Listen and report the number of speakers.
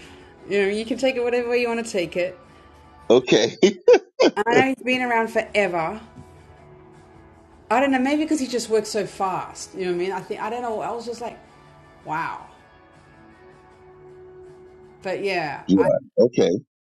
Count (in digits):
2